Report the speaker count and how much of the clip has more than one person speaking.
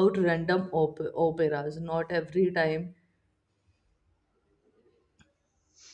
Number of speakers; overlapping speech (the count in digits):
1, no overlap